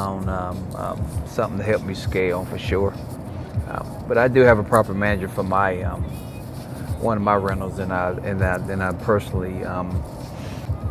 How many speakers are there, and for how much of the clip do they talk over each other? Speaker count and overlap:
1, no overlap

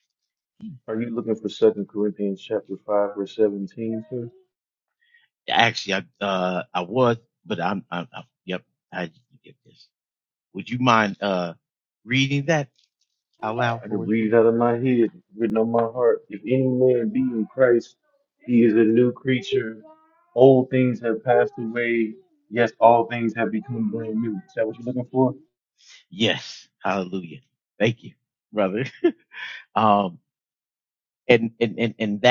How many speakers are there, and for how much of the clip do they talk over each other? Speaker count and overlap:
2, about 2%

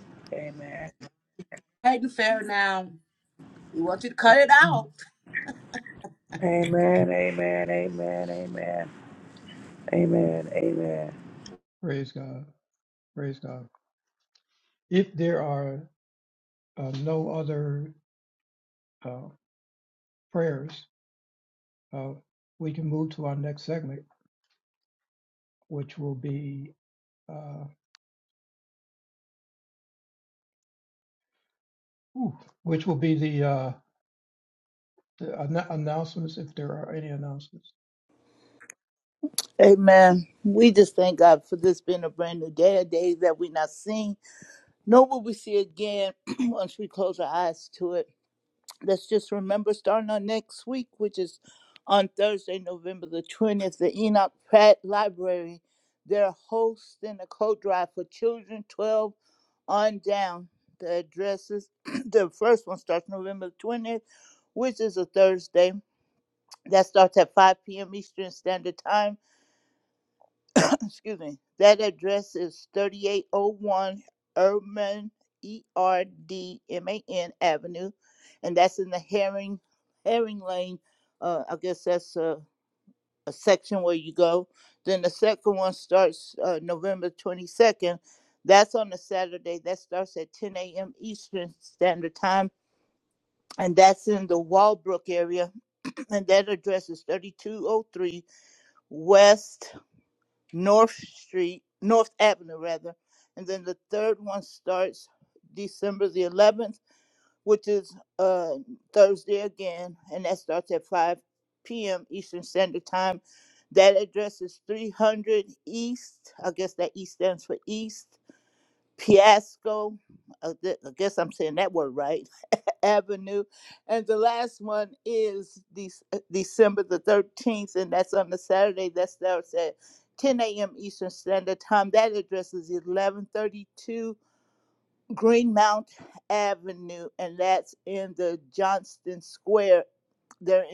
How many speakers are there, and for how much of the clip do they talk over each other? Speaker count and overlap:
4, no overlap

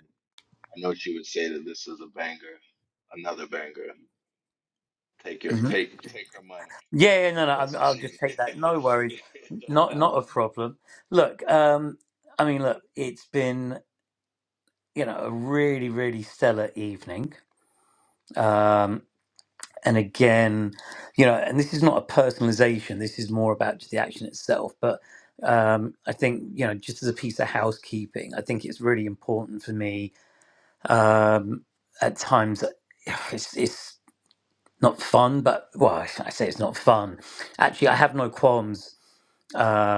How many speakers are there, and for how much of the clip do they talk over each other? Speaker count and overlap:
2, about 2%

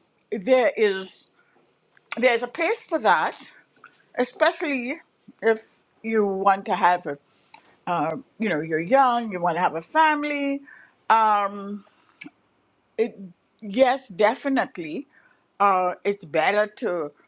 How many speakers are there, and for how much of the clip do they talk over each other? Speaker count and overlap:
1, no overlap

